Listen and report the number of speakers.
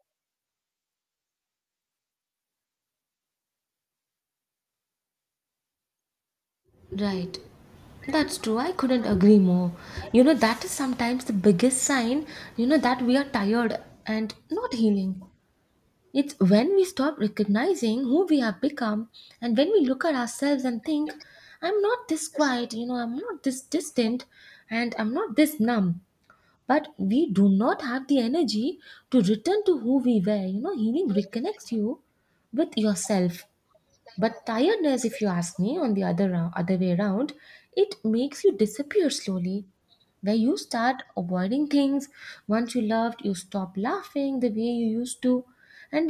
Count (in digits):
1